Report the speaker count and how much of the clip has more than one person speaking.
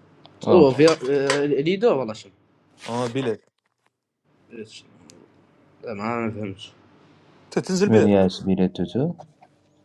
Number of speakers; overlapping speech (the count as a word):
three, about 8%